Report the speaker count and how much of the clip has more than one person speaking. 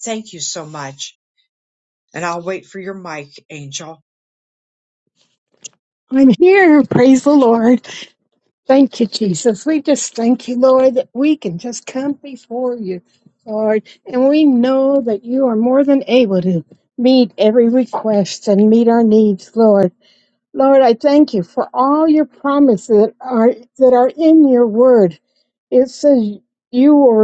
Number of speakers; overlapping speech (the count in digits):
2, no overlap